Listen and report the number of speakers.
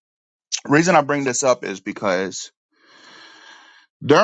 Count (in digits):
1